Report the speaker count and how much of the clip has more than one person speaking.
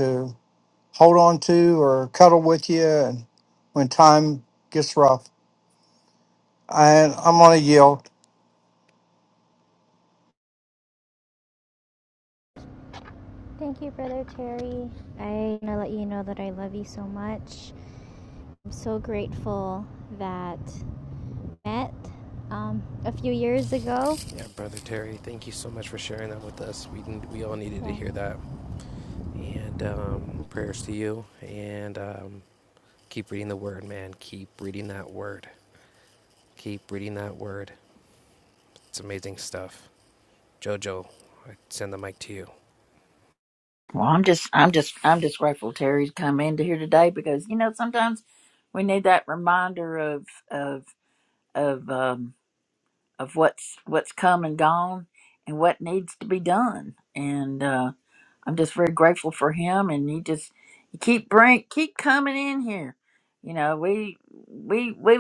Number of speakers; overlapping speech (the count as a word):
four, under 1%